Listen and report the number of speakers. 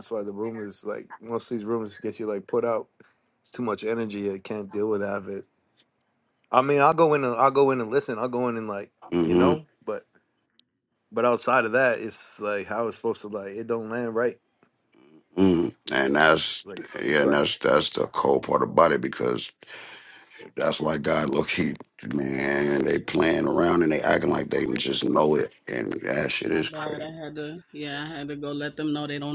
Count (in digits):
3